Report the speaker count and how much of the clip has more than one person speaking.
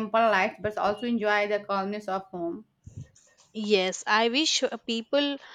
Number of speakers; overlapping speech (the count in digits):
2, no overlap